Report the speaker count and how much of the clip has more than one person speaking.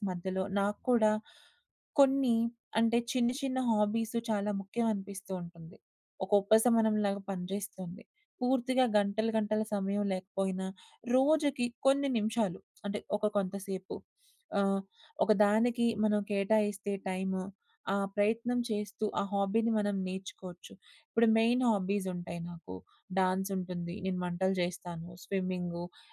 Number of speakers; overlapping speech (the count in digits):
1, no overlap